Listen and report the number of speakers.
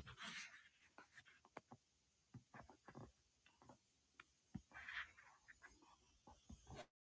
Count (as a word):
zero